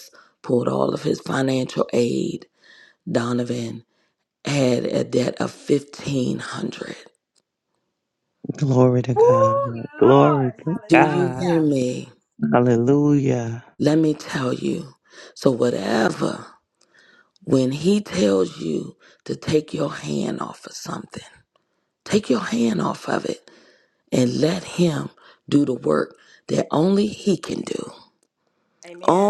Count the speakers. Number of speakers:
three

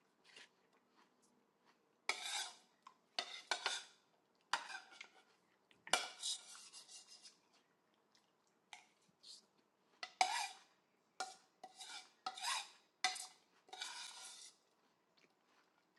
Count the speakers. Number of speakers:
zero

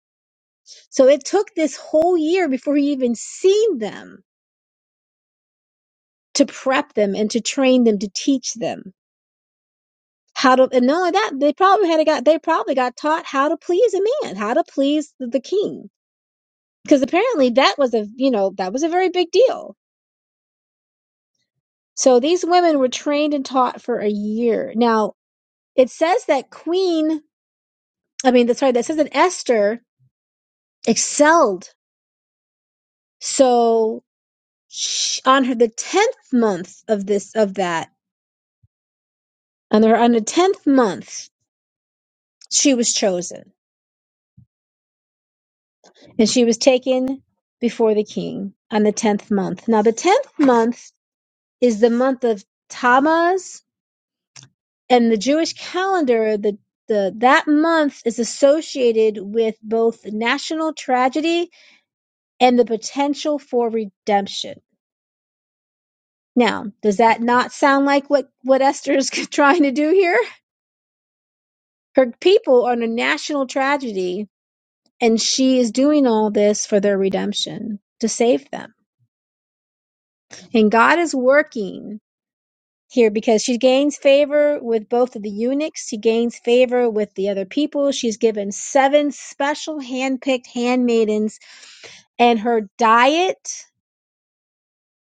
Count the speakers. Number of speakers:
one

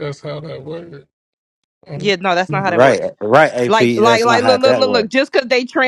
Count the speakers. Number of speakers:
three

